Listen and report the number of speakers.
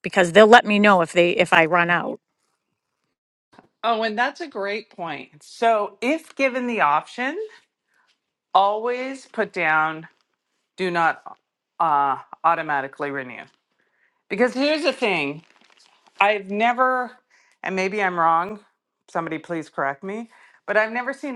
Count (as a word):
two